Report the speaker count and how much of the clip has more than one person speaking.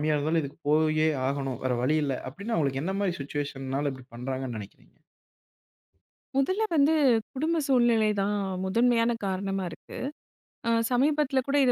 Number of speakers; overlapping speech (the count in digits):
2, no overlap